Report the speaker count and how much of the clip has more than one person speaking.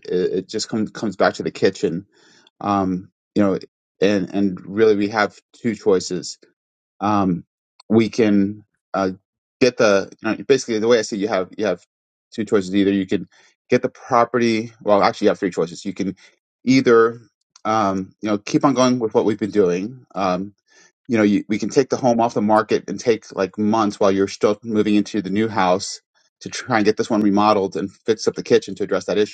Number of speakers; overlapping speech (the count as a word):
one, no overlap